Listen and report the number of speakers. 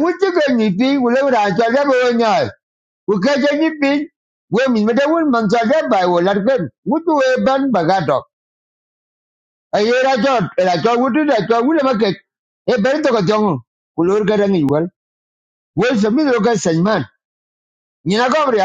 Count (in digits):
1